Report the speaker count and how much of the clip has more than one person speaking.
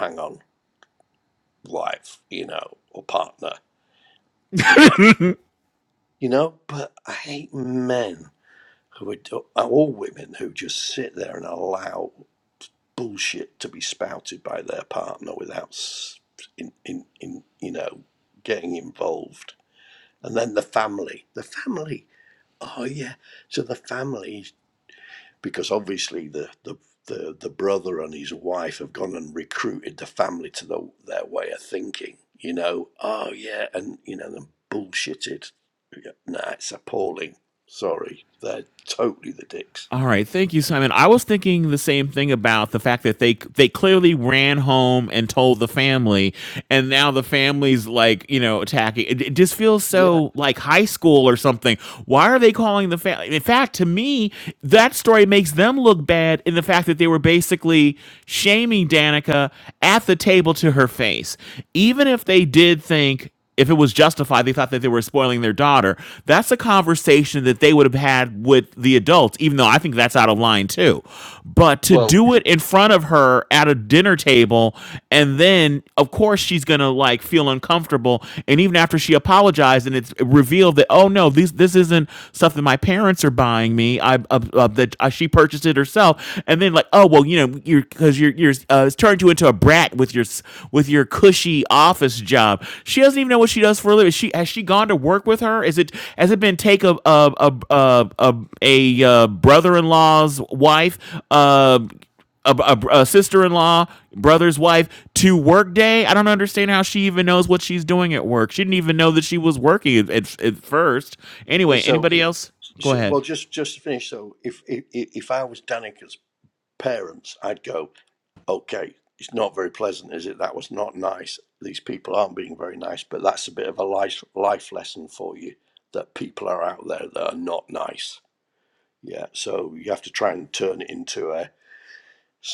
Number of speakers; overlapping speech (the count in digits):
2, about 1%